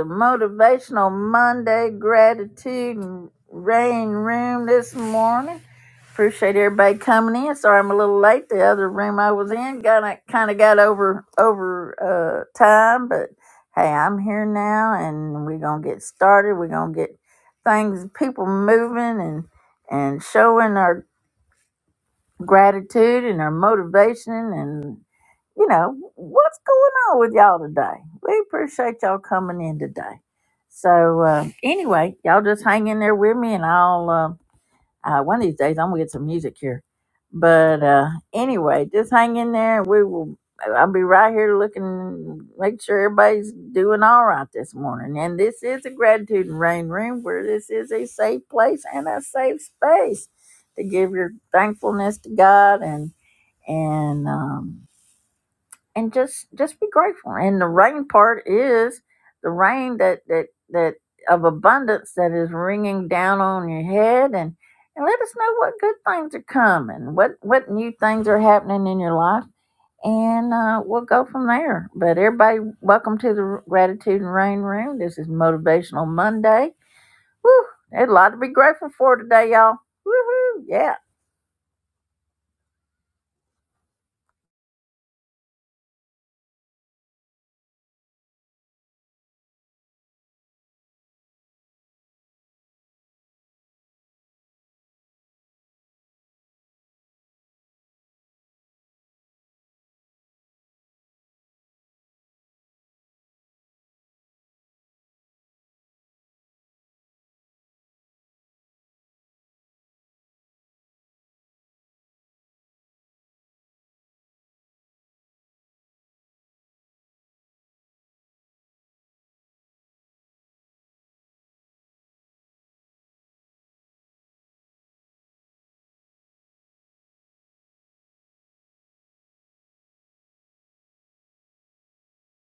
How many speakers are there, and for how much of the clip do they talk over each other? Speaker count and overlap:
one, no overlap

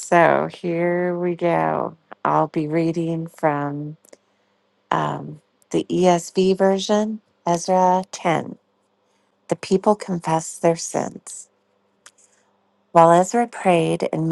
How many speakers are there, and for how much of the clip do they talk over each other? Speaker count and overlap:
one, no overlap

